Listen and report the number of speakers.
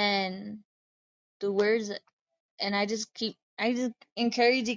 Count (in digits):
1